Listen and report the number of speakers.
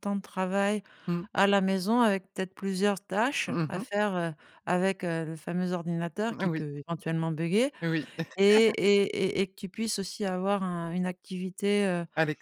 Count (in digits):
2